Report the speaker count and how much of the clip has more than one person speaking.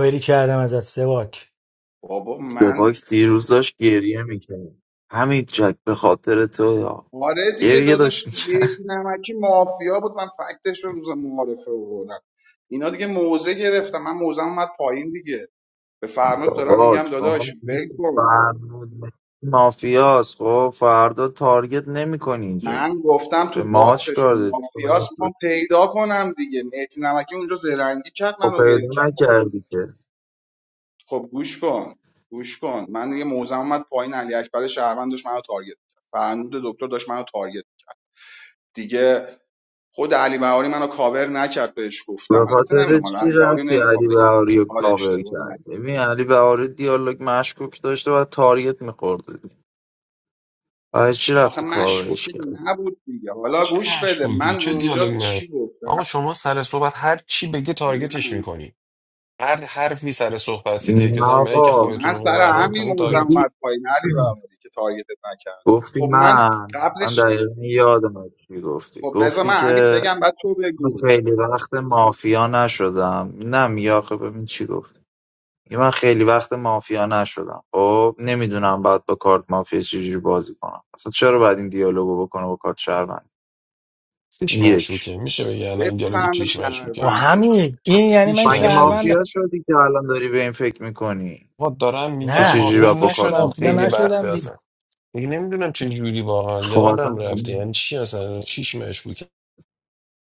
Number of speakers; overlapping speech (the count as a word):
four, about 23%